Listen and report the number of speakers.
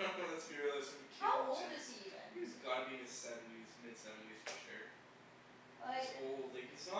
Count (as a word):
two